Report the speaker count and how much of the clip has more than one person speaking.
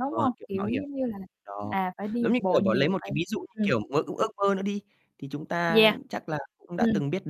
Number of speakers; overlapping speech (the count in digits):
2, about 33%